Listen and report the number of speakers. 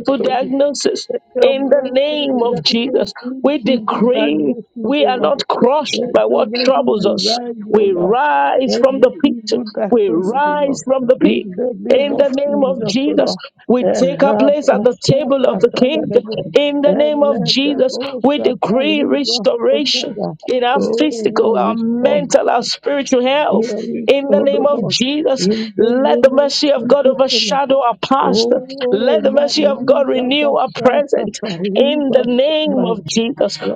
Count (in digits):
2